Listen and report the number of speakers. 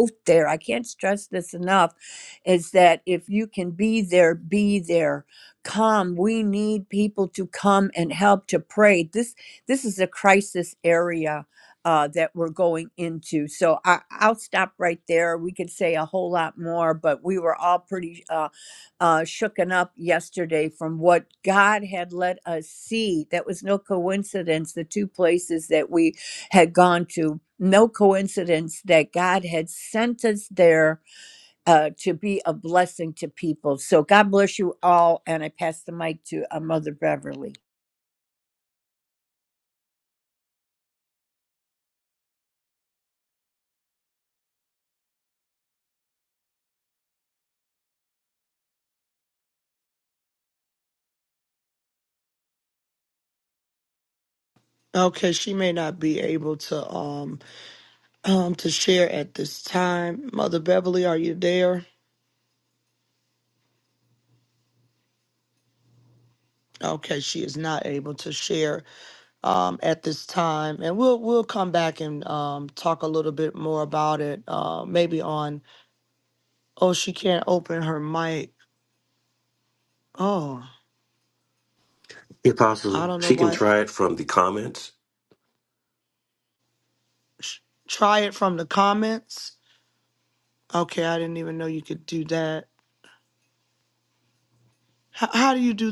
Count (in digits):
3